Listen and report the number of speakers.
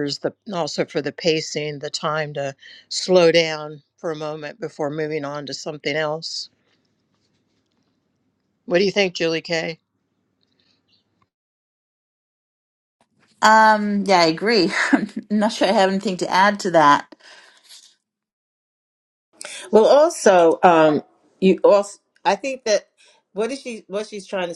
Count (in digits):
3